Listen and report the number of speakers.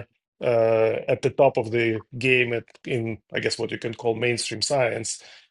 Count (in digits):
1